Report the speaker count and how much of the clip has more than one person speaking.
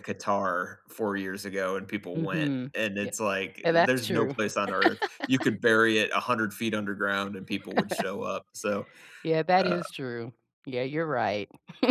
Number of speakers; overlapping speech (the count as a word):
two, about 14%